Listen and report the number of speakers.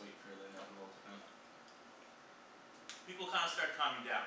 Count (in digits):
2